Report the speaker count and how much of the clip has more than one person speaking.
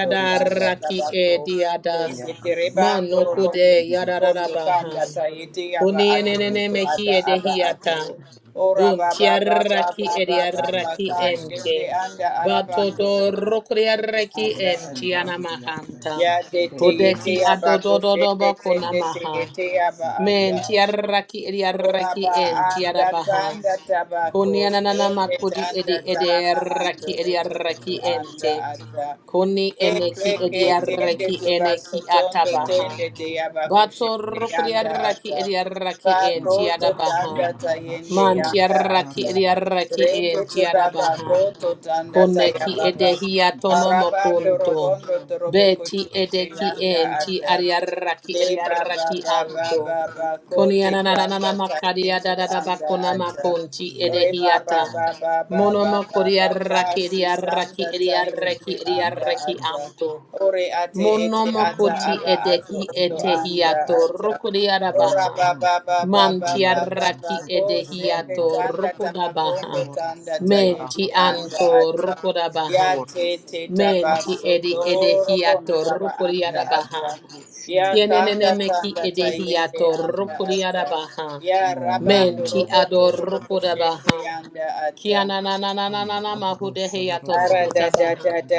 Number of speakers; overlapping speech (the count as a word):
three, about 85%